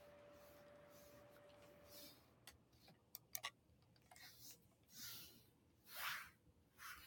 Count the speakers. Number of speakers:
0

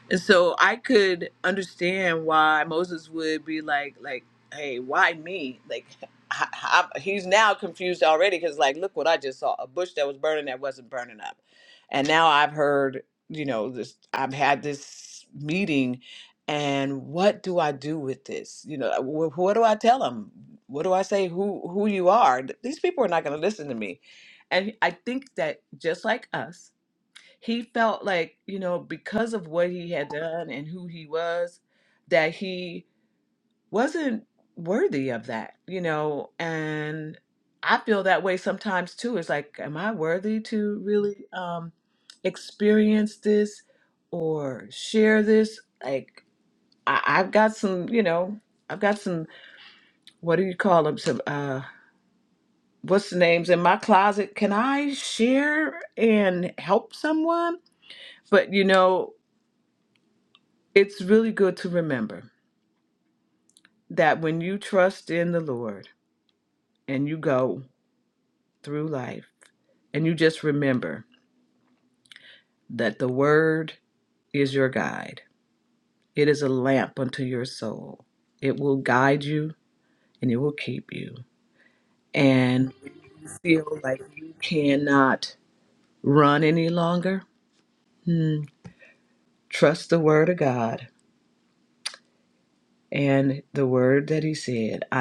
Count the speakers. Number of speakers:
1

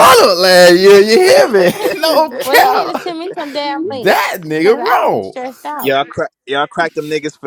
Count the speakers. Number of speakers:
3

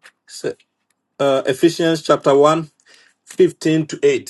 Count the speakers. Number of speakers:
1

